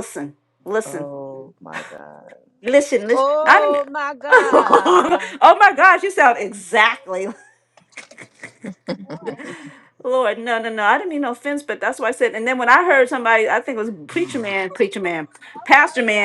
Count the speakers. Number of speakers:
two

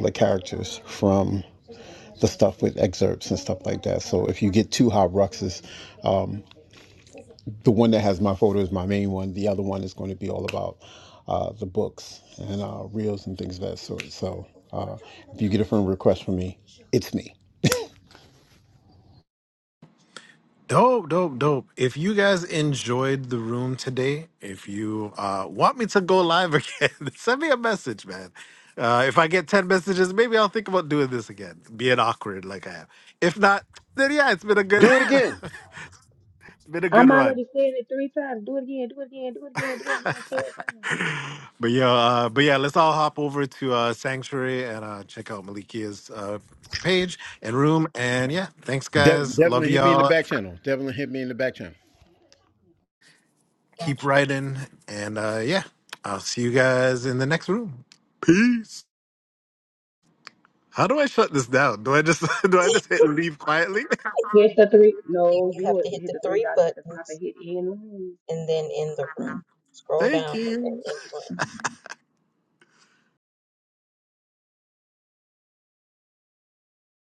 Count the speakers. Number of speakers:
four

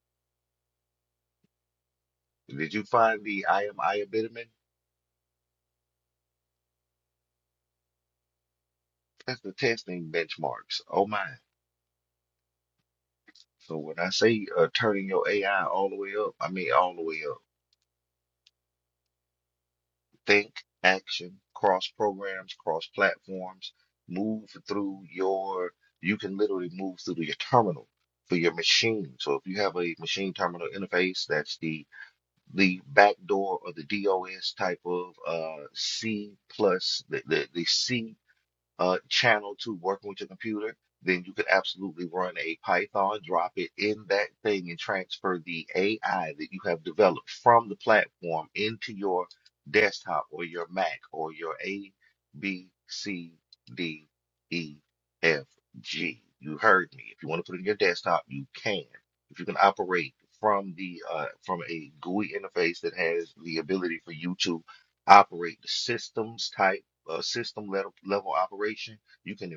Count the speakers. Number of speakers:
one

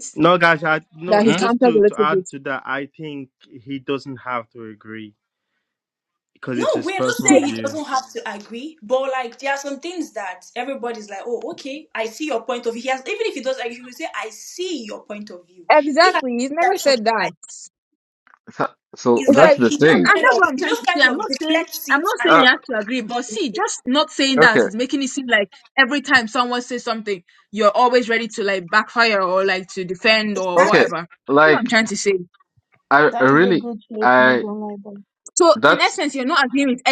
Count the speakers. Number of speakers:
five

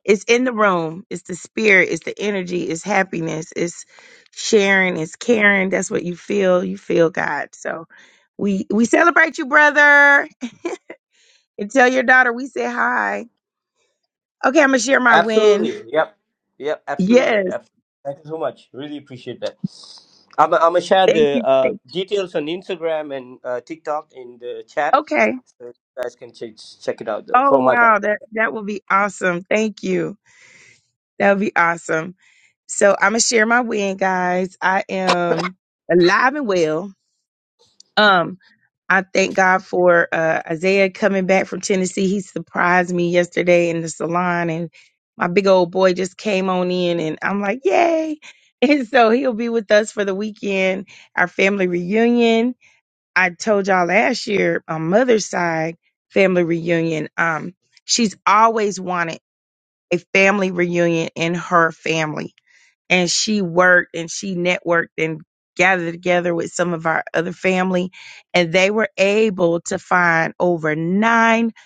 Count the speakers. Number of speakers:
two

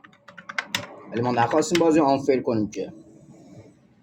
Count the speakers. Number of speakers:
one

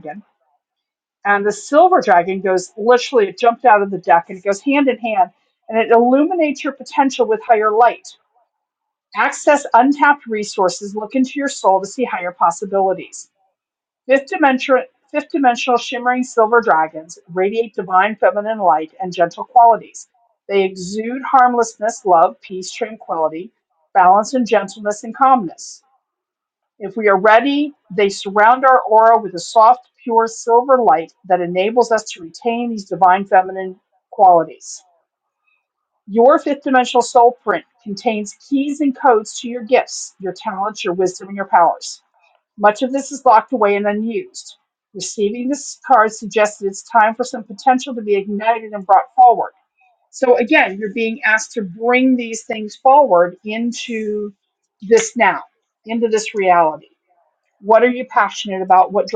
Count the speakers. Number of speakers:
one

